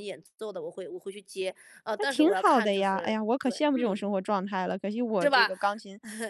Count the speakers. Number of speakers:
two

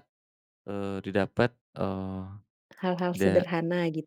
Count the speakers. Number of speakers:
two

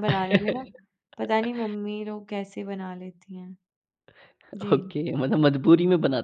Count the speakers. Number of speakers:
two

